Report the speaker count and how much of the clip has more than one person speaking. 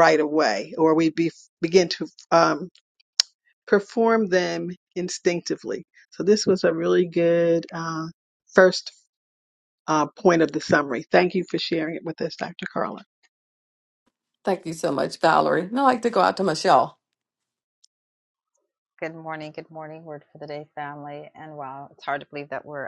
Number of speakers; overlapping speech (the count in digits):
3, no overlap